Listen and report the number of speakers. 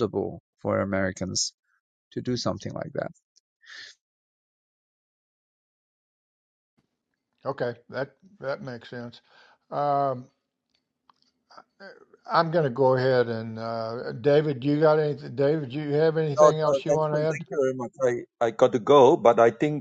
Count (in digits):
3